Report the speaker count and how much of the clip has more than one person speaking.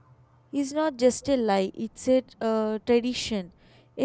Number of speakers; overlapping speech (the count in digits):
1, no overlap